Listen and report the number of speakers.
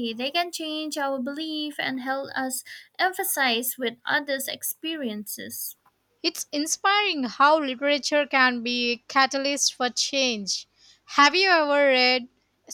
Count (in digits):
2